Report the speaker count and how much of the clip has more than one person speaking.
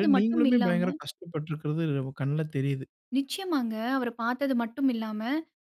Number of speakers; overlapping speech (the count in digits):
2, about 15%